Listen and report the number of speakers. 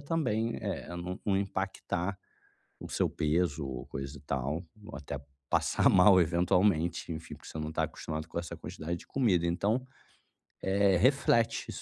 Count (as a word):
one